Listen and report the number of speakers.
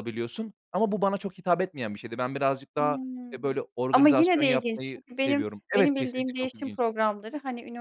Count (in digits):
2